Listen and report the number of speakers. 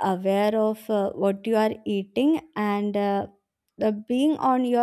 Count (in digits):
1